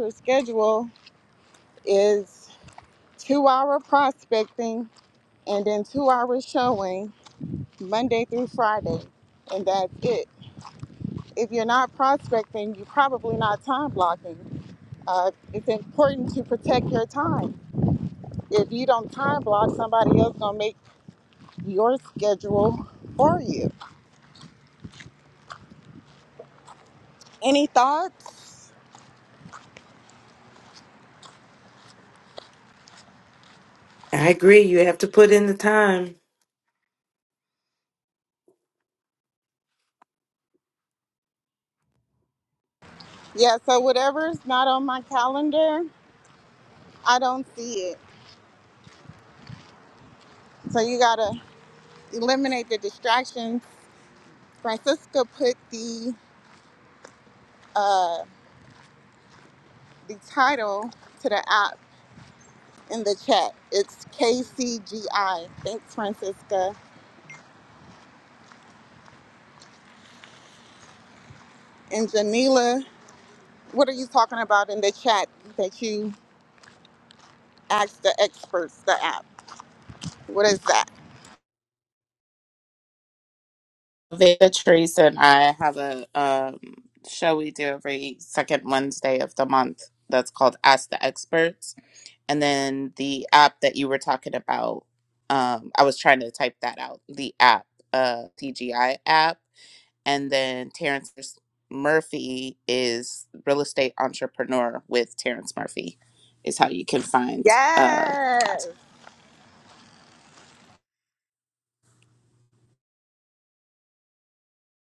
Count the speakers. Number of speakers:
3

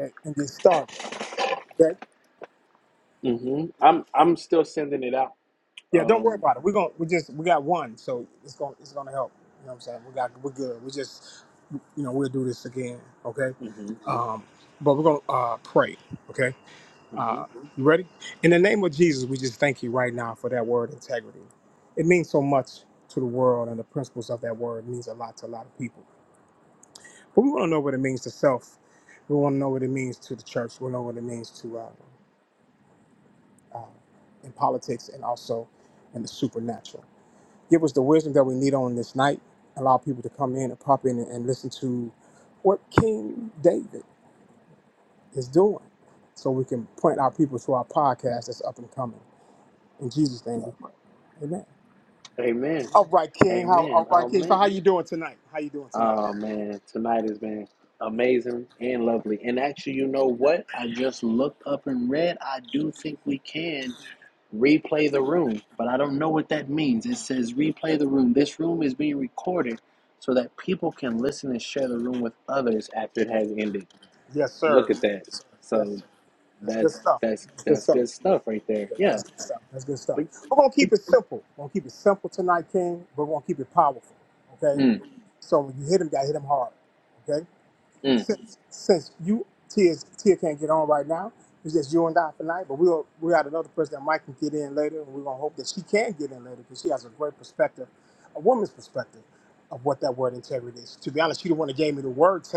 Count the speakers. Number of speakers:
2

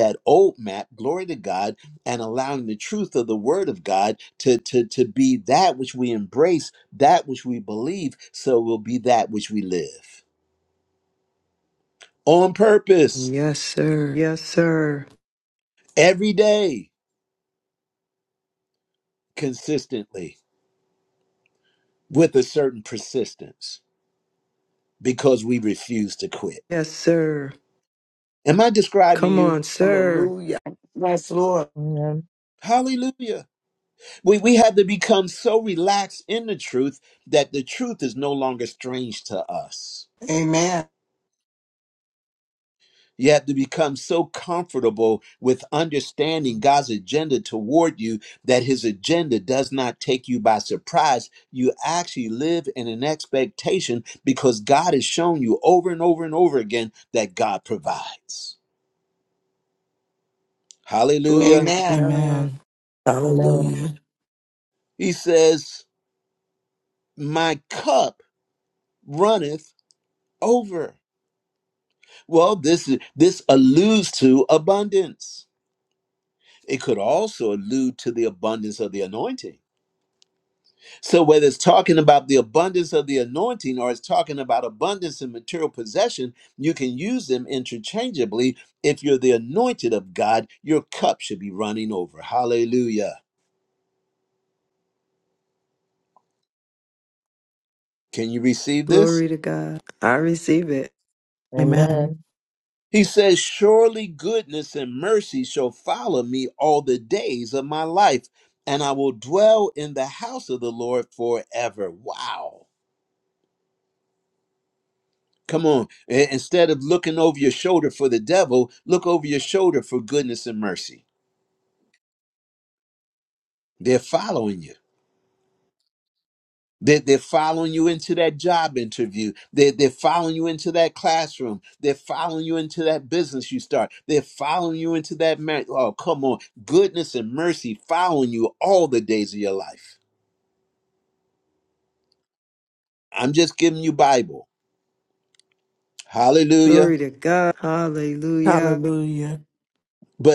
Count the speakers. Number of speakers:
5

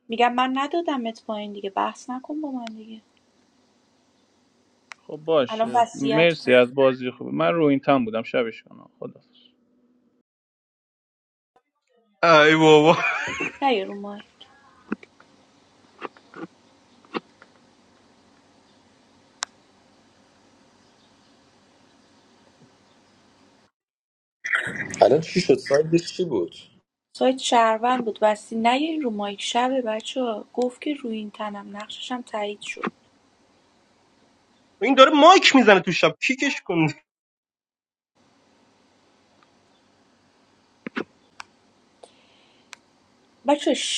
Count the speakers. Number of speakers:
4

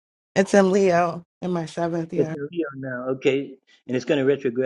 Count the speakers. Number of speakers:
2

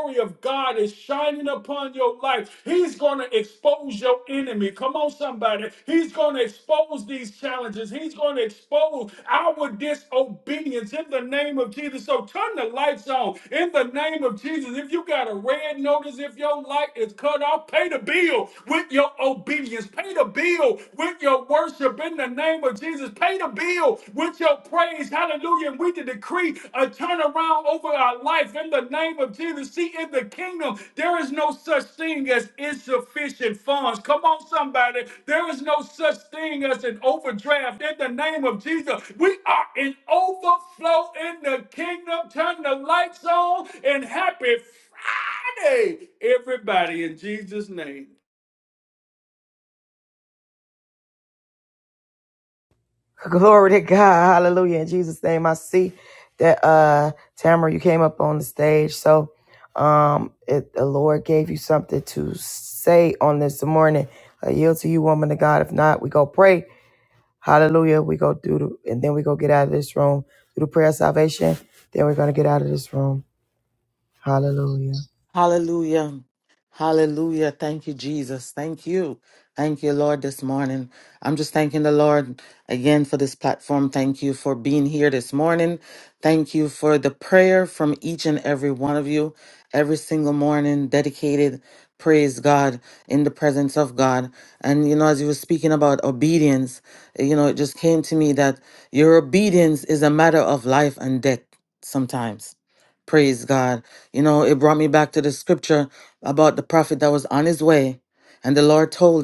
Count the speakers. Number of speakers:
3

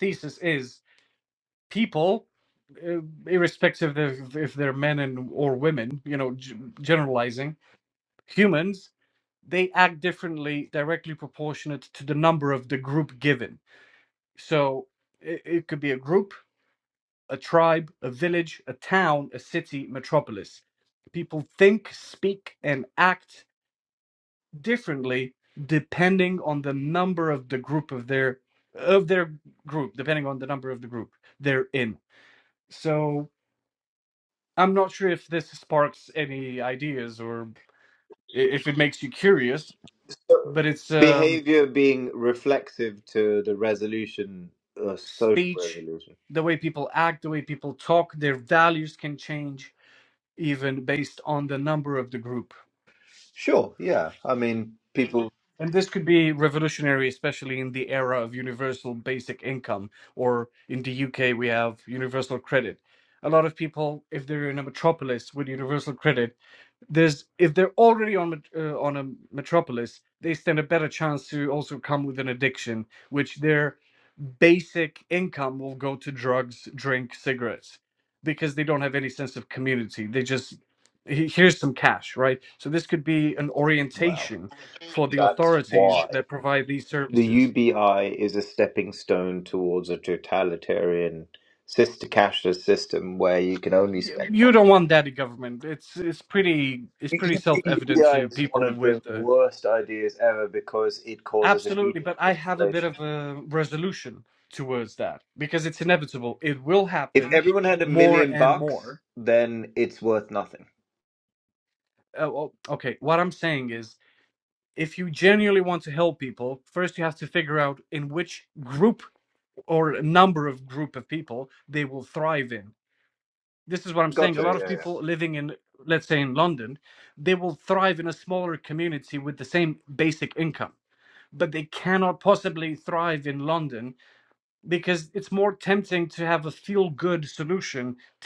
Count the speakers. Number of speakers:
2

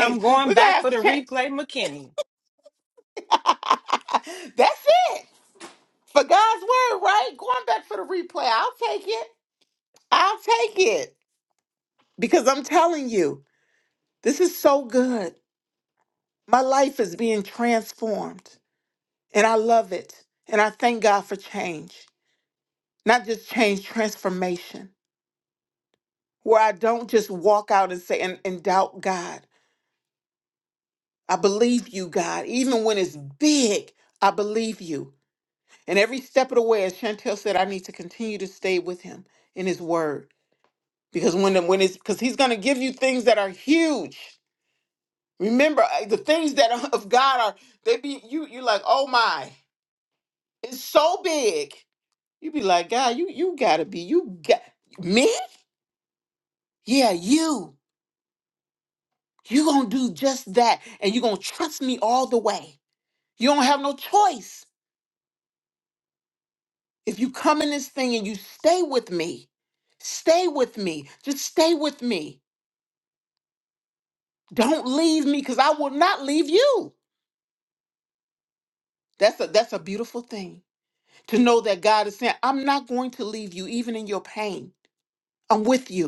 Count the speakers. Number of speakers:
2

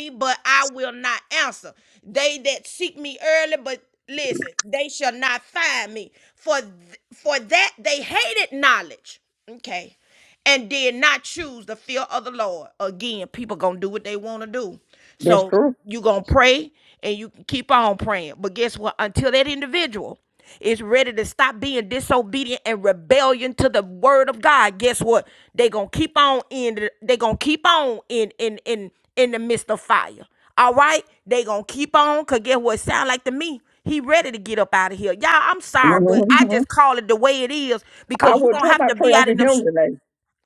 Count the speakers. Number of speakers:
2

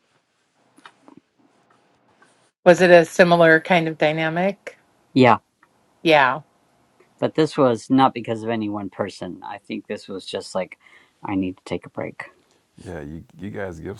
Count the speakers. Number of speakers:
3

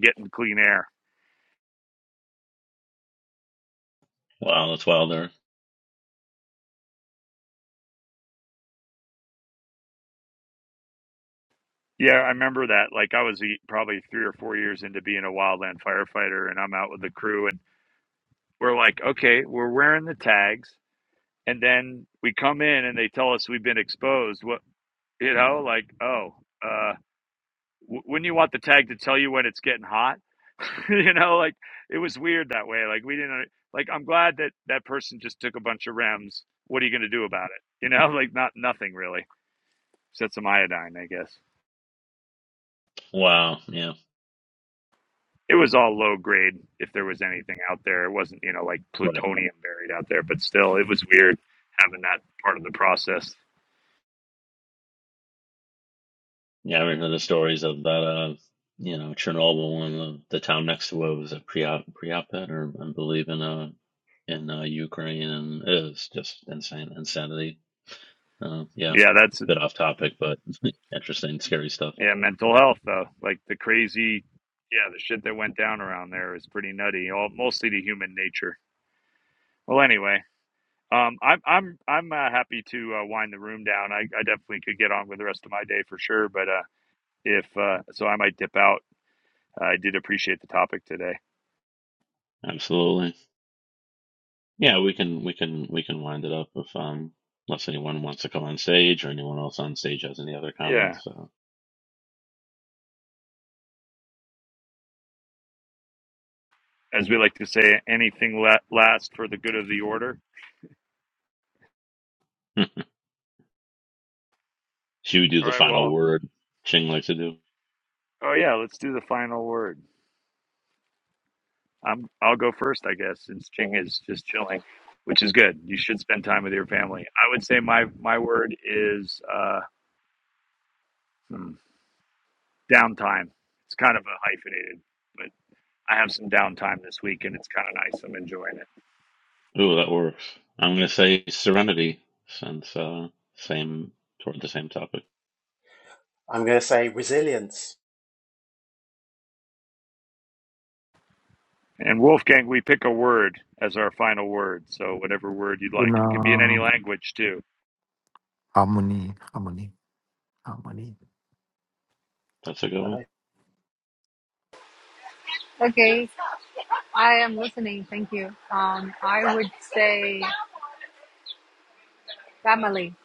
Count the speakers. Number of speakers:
5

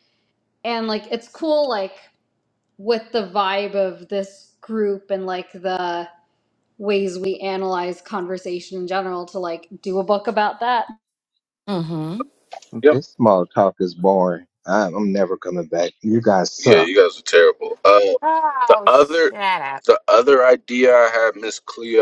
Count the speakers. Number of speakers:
4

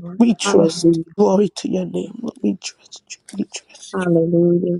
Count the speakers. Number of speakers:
2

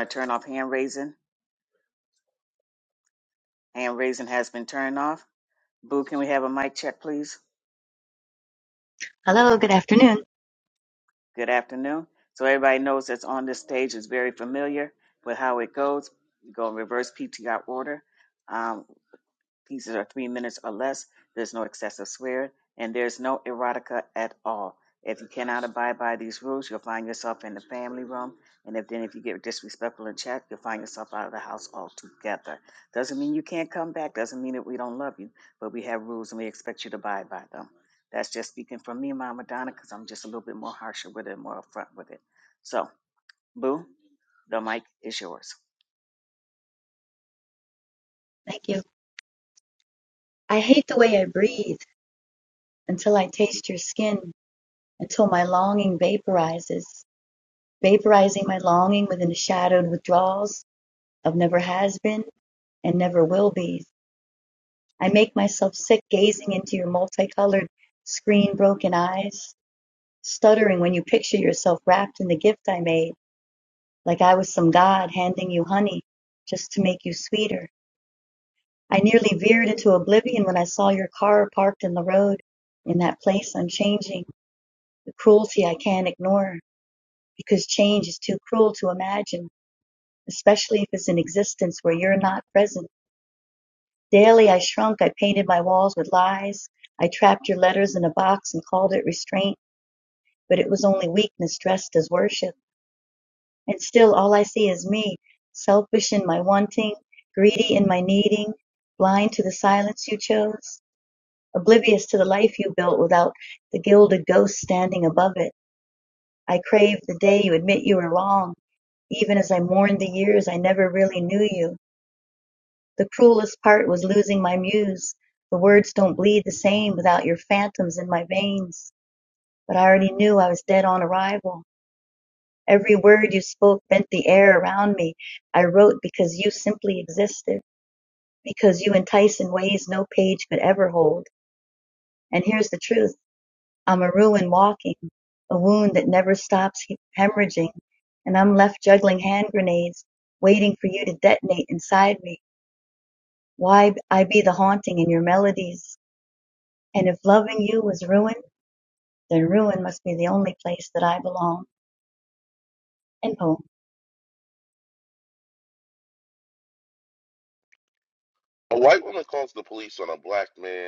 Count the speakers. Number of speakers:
3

